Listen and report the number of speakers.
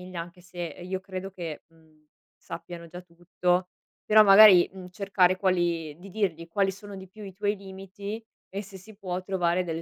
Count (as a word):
one